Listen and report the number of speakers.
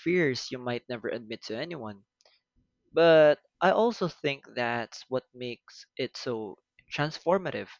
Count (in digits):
1